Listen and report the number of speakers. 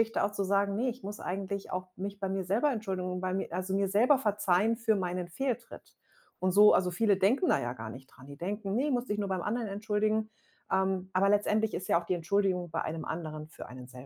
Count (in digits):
1